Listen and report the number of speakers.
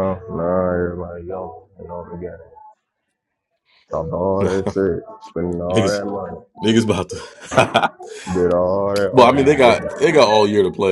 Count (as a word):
two